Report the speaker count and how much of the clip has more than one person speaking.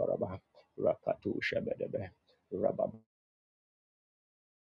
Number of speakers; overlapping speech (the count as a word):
one, no overlap